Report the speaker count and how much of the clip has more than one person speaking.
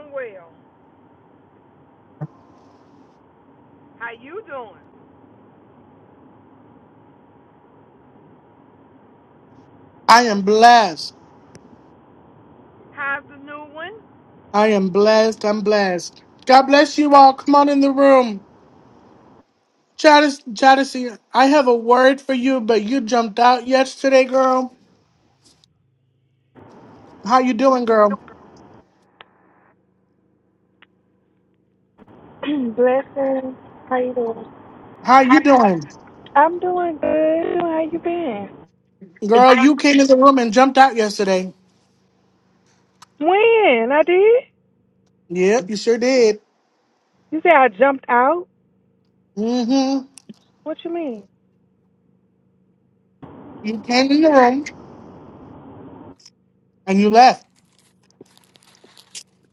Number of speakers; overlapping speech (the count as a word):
three, about 1%